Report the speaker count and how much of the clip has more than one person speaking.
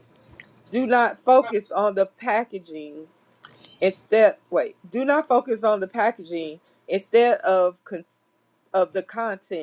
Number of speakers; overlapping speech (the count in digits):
1, no overlap